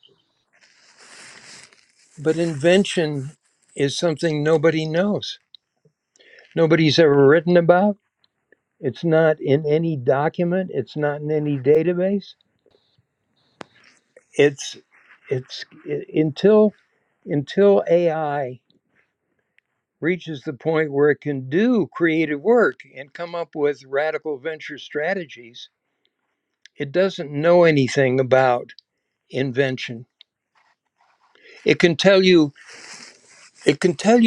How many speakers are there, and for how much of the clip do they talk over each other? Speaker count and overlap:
one, no overlap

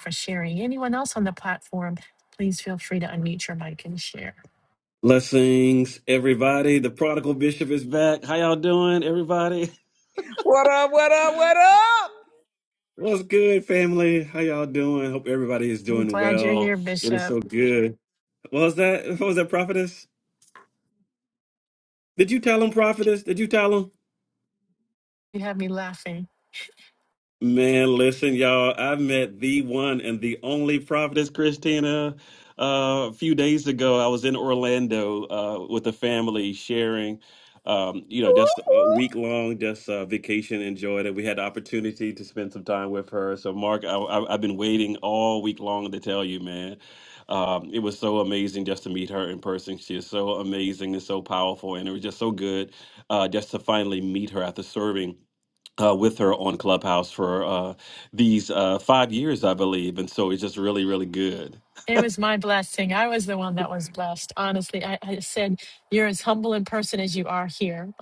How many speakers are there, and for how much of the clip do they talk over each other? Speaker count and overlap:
three, about 2%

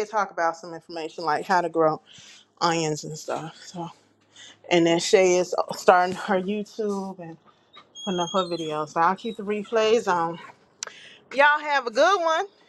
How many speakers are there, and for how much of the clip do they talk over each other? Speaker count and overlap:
one, no overlap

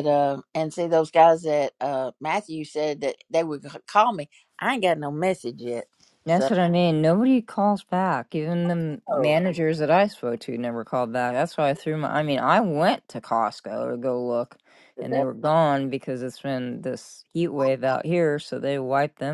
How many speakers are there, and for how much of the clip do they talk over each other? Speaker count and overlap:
two, about 3%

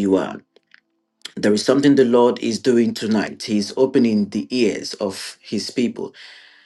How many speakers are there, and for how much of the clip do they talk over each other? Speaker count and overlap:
one, no overlap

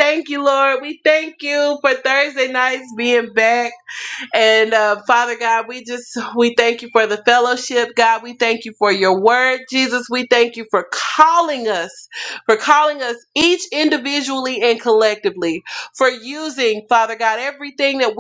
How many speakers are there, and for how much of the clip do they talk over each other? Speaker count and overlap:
one, no overlap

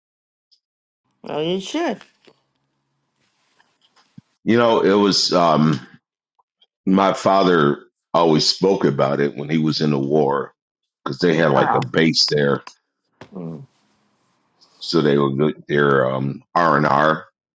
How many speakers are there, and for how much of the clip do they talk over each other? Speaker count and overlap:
two, about 2%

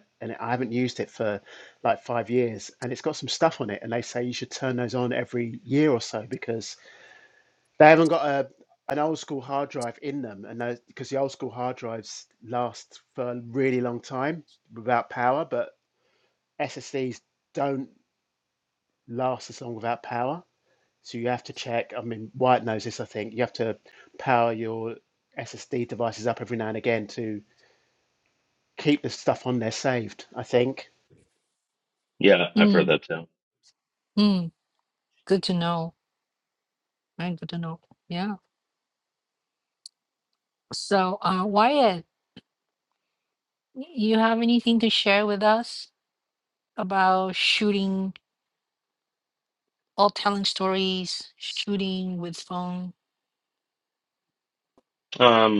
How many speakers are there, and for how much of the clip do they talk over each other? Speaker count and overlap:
three, about 1%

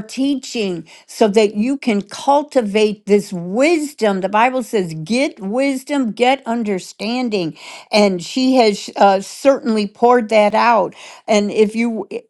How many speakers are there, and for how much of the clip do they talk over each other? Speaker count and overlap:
one, no overlap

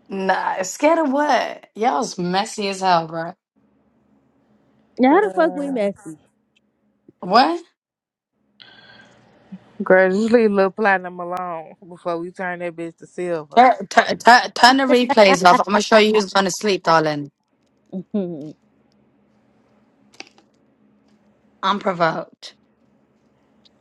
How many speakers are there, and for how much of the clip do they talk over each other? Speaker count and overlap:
three, under 1%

